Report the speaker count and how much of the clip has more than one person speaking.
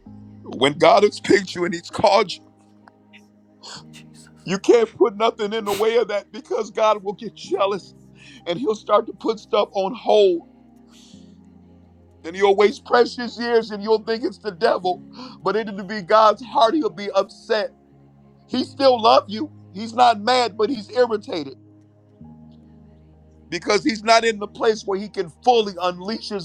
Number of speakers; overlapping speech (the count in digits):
1, no overlap